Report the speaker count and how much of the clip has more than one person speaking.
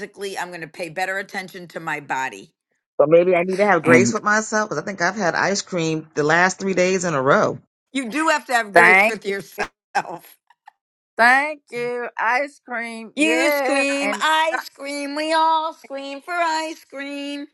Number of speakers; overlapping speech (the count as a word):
three, about 10%